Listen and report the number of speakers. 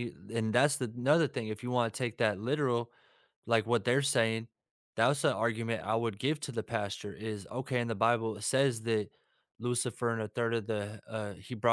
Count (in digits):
1